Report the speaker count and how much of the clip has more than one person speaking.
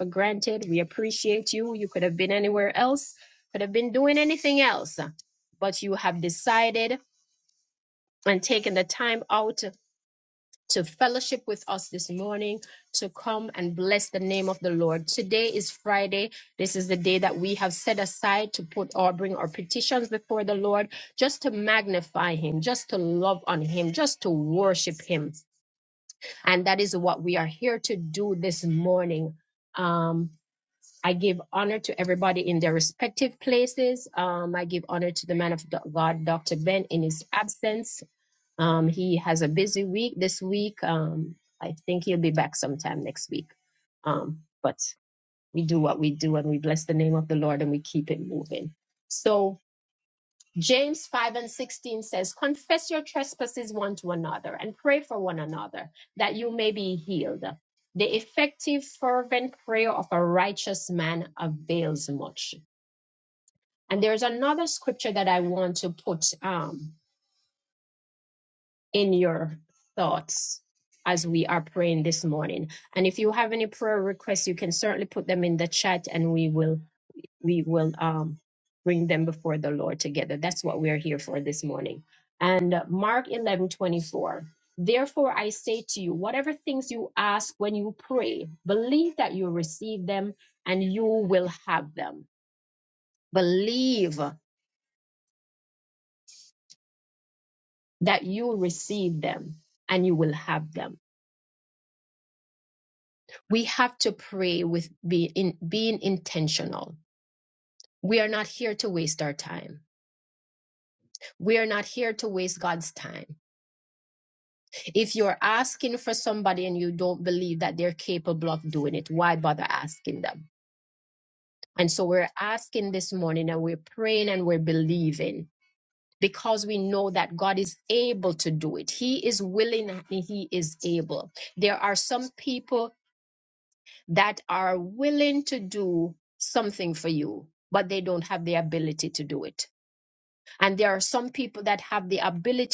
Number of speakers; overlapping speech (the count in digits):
1, no overlap